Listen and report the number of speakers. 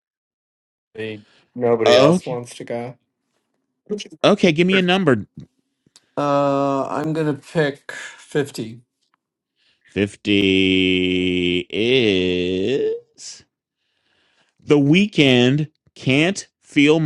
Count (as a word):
two